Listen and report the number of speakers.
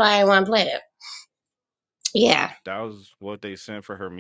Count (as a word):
two